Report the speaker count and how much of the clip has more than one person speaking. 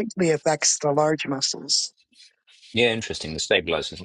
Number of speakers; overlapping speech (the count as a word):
two, no overlap